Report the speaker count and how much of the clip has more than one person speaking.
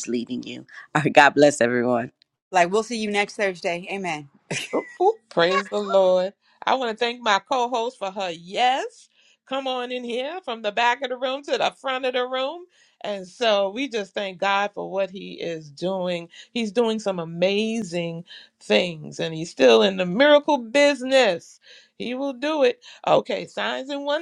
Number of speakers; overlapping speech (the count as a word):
three, no overlap